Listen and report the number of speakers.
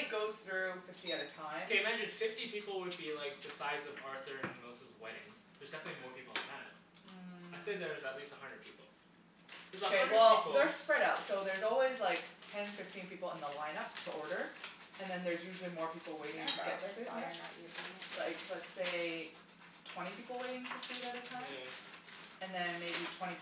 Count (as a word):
three